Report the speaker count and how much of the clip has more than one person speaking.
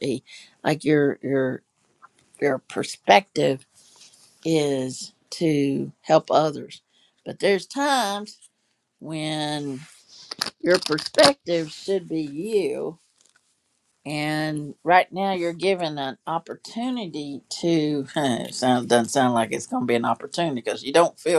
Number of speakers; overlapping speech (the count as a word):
one, no overlap